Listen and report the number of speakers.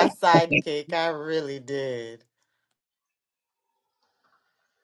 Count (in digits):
1